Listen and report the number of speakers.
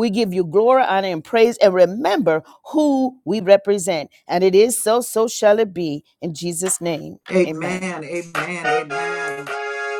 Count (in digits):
2